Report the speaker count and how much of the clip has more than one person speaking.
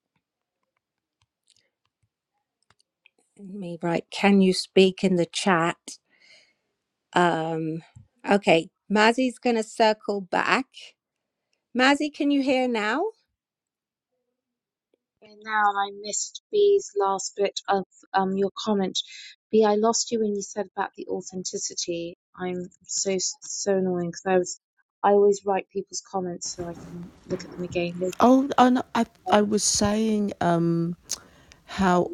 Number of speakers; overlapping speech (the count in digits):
3, no overlap